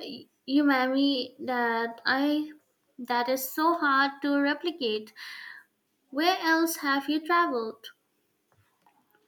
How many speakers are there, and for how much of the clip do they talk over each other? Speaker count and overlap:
1, no overlap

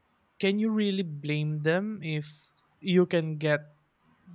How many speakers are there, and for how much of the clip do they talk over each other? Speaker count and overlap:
1, no overlap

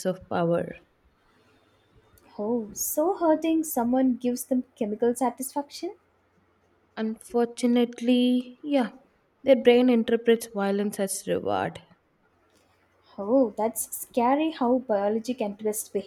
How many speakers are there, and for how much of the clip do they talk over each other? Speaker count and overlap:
2, no overlap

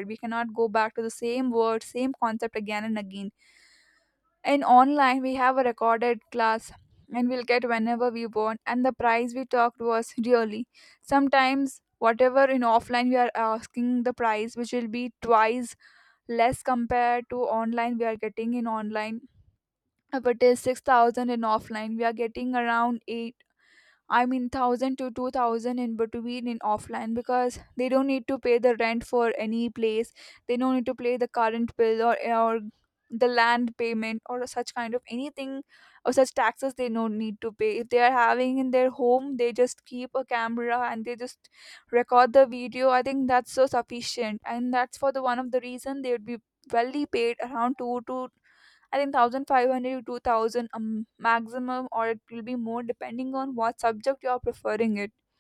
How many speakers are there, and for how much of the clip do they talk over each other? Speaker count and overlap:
1, no overlap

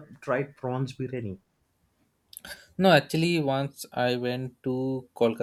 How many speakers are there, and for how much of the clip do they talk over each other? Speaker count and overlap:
2, no overlap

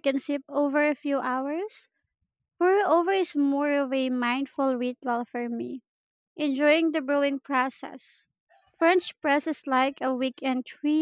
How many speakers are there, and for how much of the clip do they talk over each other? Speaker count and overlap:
1, no overlap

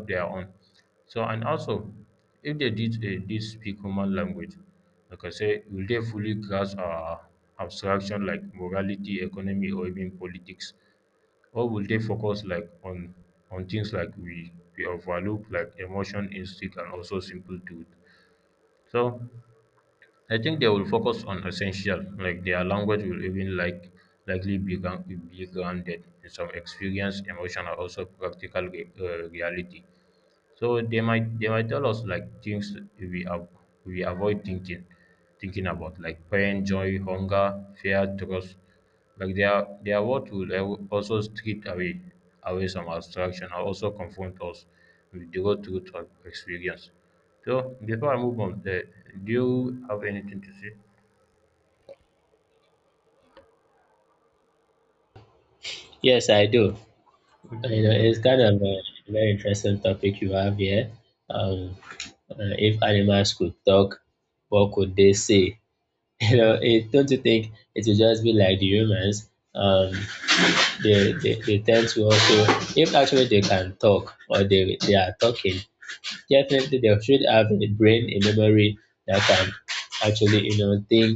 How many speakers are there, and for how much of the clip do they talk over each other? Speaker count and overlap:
2, no overlap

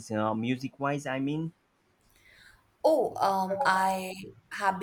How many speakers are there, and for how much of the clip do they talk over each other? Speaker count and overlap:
2, no overlap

